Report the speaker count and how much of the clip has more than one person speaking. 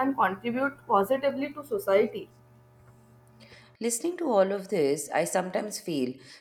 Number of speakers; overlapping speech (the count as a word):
two, no overlap